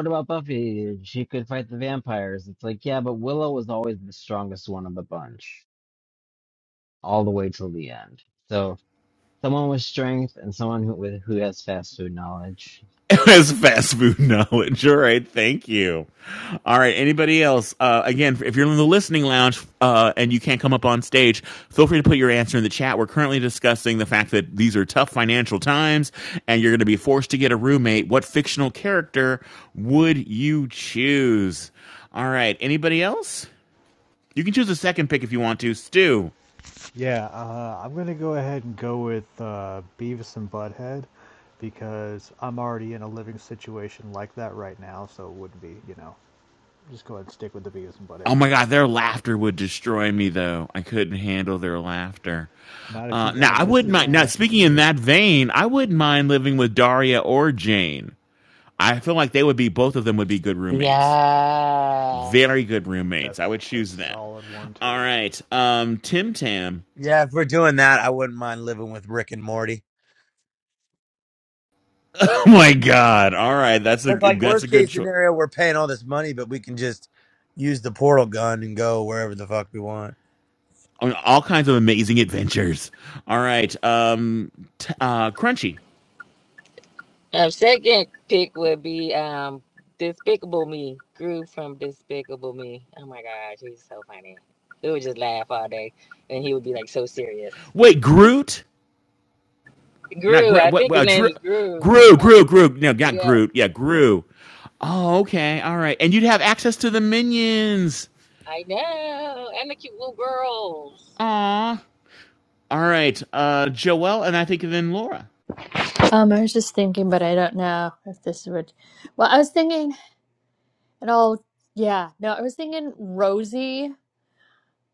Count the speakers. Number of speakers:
7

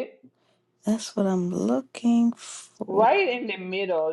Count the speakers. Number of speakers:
2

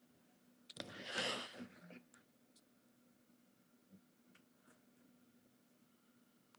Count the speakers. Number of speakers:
0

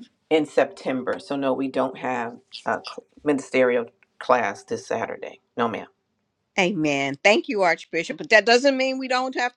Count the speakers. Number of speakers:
2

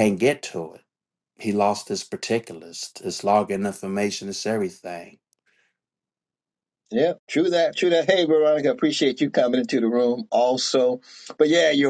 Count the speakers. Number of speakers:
2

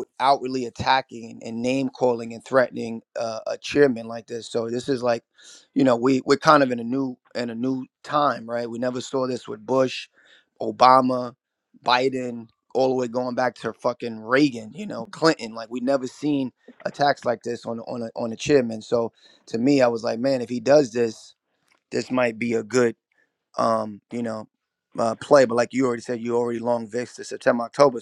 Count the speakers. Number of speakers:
1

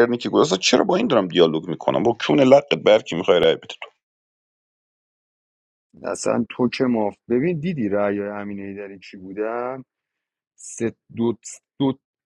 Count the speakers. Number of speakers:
2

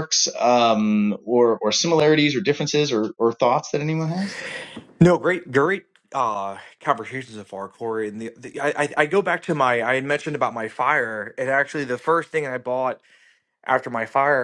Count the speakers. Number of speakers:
2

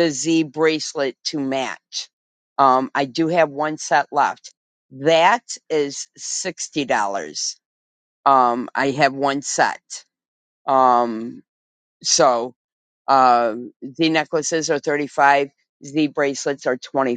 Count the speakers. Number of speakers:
1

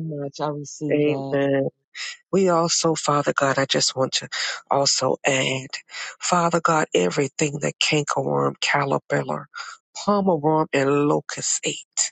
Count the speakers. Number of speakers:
2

